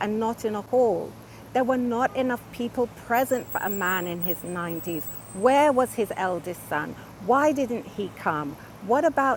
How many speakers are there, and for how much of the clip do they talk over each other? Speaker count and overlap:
1, no overlap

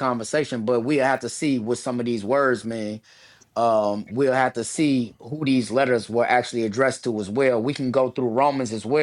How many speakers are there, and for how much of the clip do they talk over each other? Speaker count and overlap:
1, no overlap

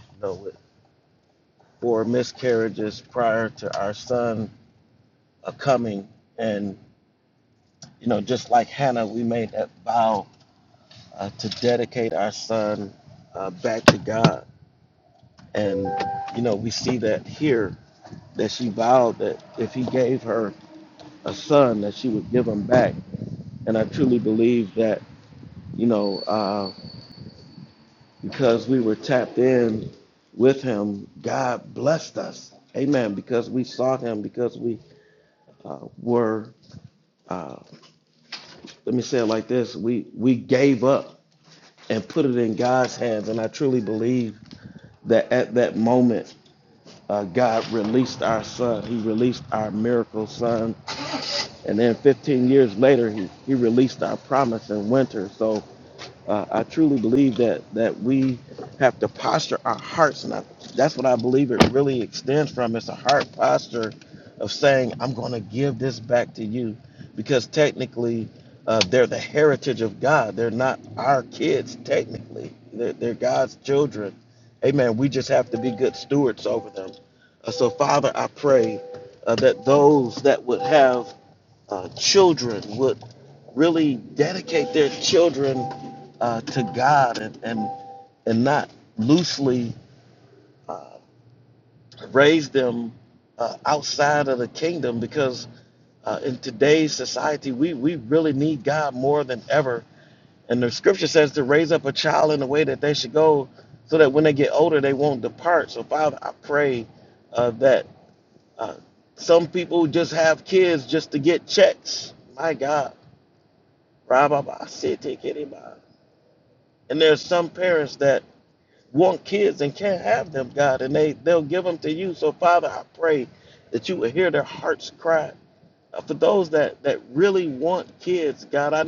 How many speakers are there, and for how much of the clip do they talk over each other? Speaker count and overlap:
1, no overlap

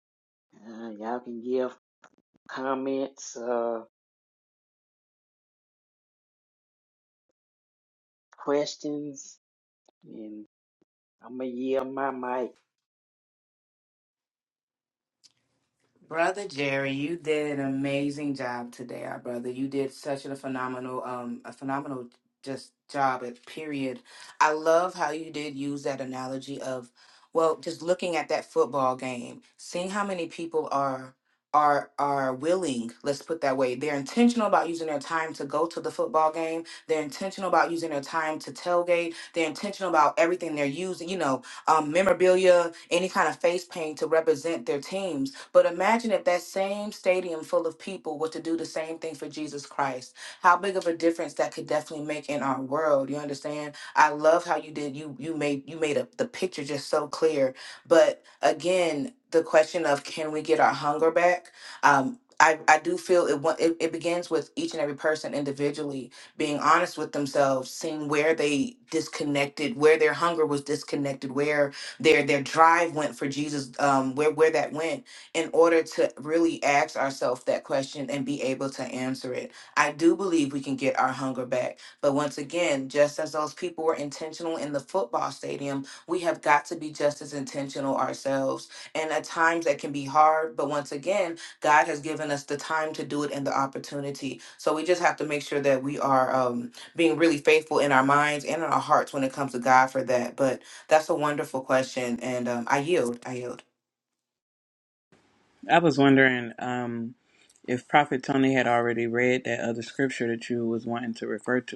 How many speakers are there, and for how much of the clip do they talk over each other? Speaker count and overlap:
3, no overlap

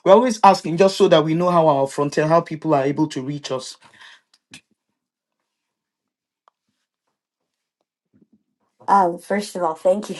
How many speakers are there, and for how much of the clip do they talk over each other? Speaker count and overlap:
2, no overlap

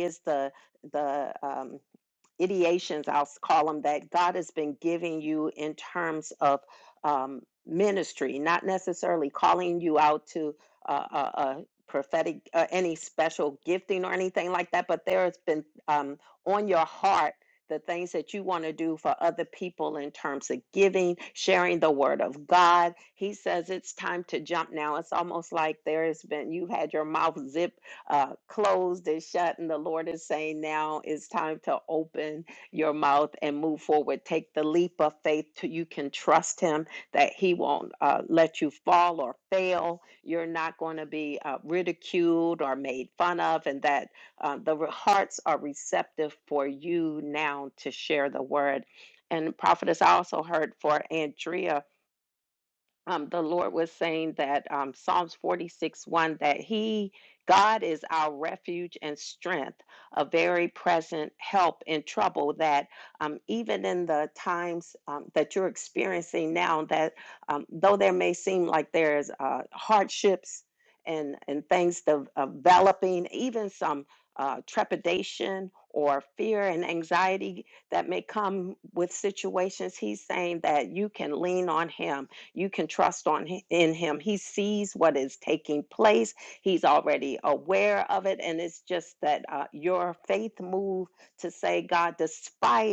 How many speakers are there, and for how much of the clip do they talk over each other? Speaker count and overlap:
1, no overlap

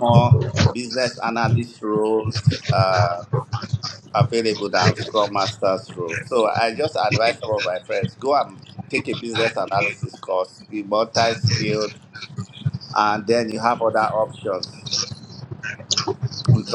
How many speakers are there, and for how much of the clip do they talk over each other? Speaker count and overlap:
1, no overlap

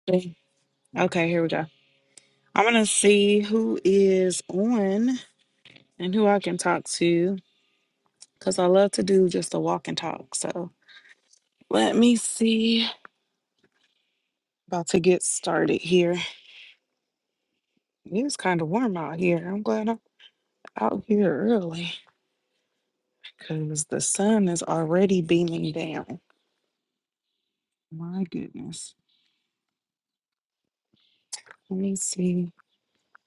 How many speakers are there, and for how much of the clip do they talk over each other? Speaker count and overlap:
1, no overlap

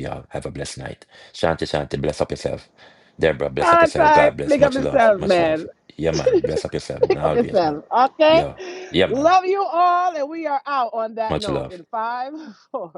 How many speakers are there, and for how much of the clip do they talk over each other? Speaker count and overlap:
2, about 28%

